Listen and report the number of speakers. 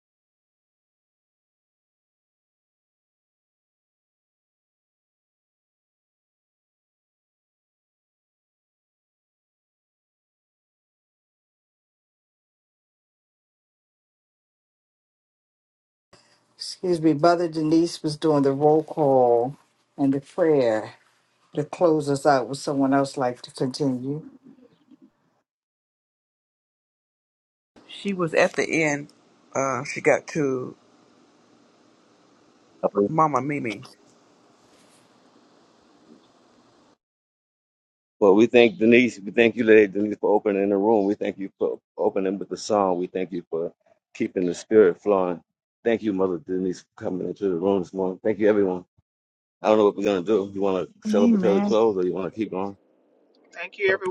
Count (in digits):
4